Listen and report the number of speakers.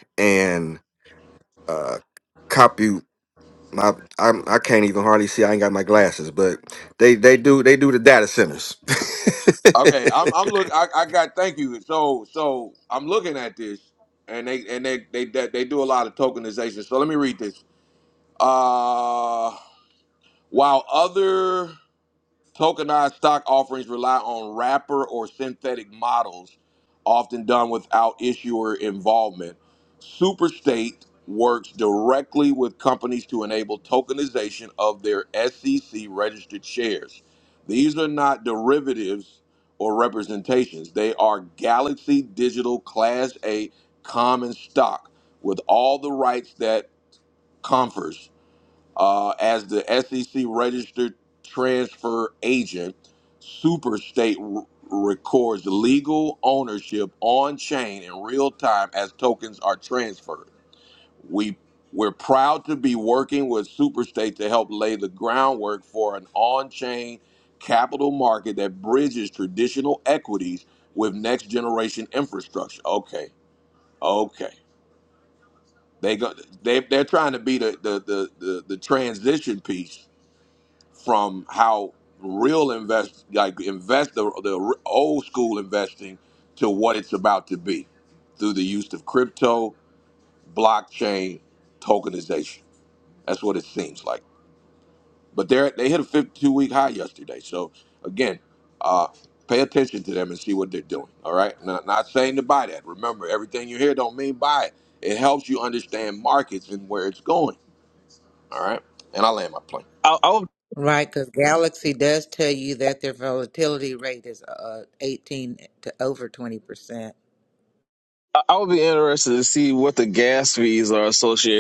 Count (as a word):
four